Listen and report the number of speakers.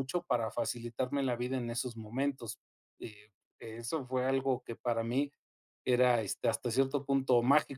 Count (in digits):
1